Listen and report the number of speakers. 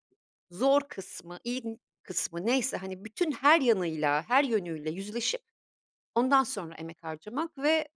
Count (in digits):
1